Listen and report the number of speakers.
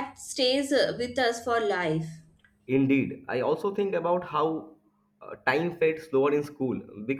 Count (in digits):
2